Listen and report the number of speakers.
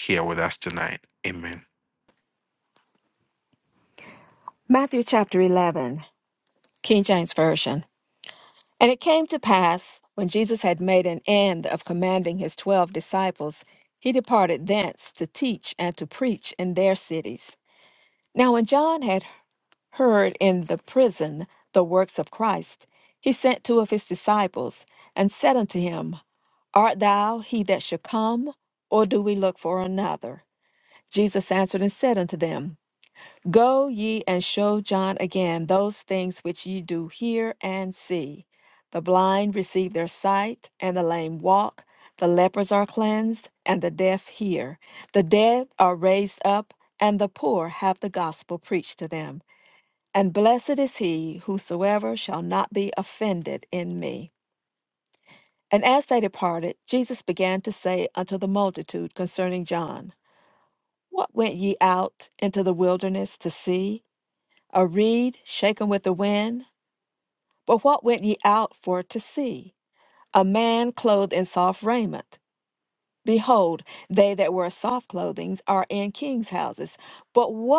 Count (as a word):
two